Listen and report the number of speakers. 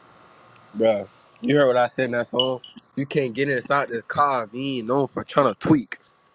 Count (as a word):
one